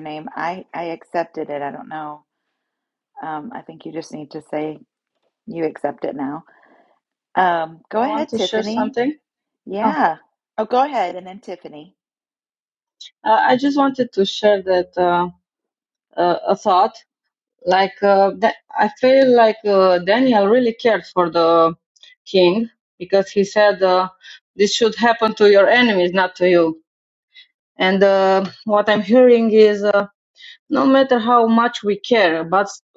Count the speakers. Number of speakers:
2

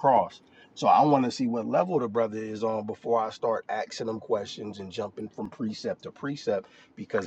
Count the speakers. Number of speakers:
1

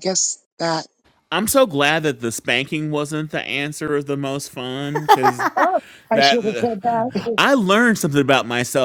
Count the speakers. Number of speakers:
2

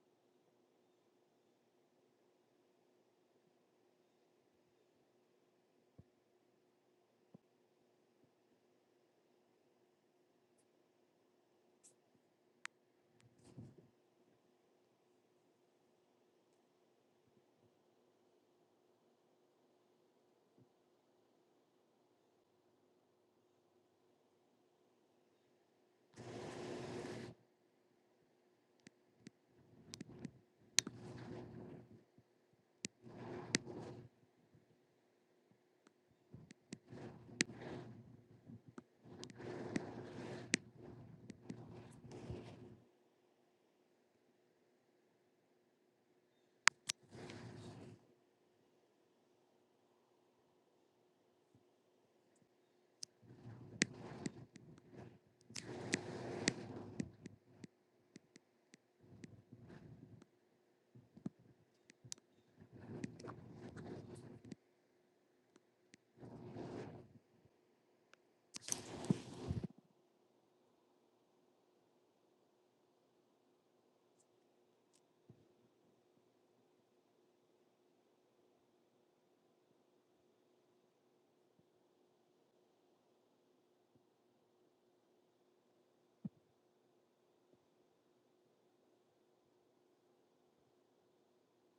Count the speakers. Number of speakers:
0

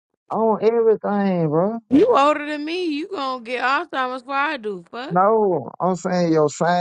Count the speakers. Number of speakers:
2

